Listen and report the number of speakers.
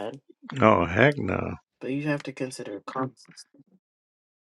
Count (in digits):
2